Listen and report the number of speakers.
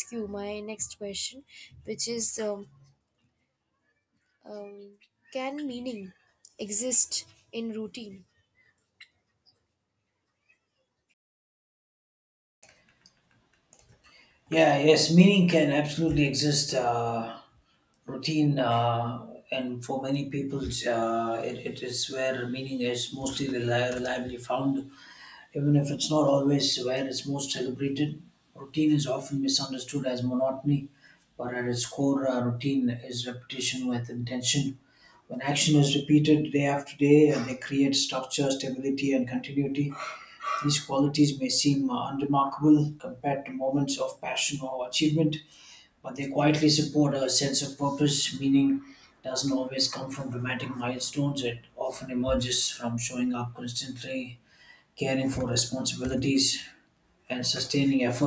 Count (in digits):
2